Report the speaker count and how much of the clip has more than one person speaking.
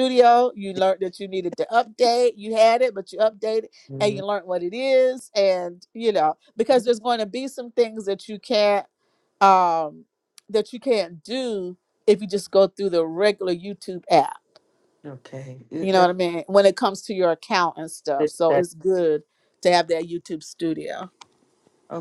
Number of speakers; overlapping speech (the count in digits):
2, about 4%